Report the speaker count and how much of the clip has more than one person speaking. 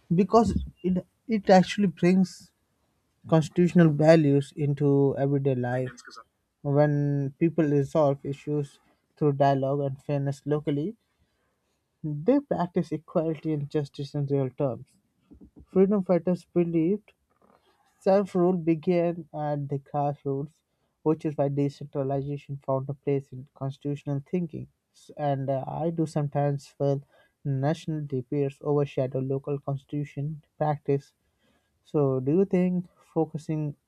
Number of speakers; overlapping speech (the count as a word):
one, no overlap